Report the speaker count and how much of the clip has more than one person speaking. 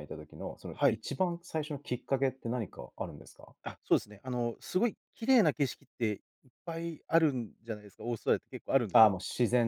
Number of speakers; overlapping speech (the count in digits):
2, about 4%